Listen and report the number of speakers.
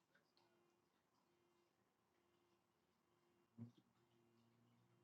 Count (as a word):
zero